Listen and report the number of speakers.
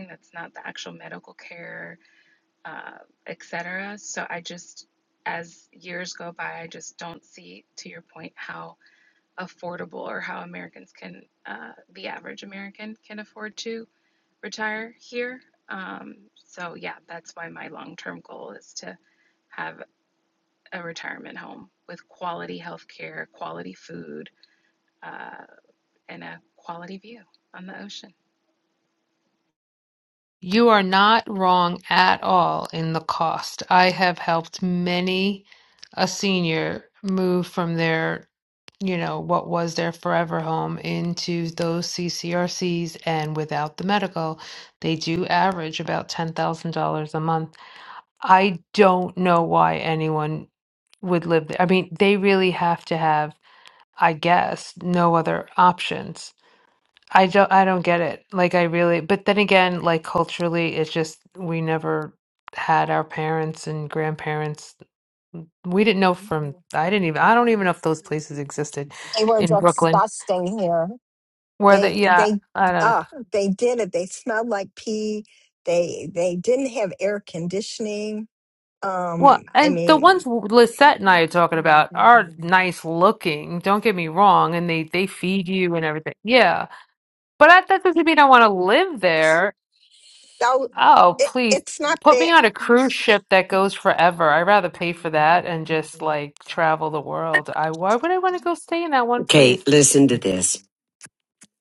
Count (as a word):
four